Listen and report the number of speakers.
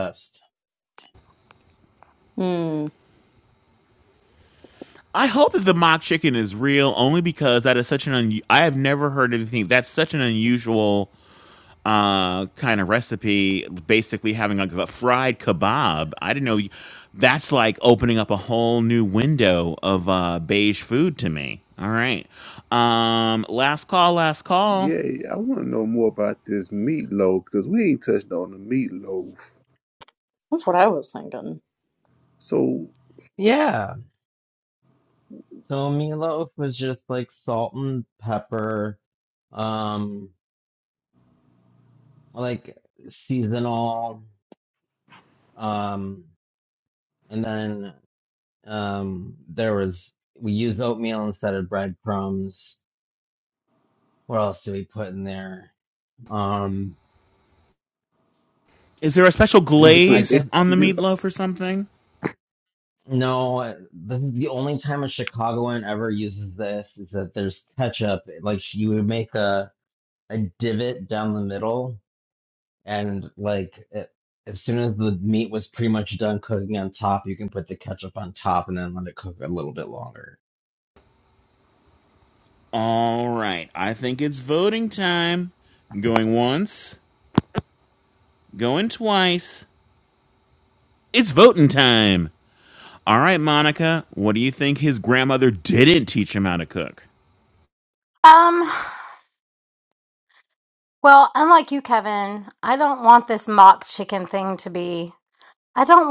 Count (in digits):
5